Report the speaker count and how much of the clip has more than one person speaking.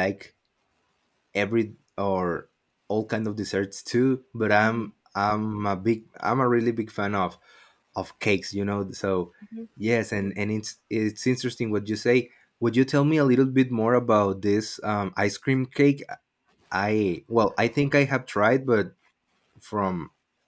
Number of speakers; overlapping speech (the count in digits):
1, no overlap